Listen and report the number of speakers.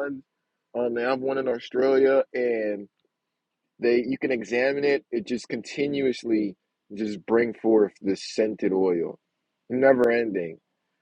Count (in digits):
1